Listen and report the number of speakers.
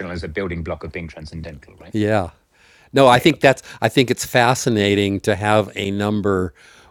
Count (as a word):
two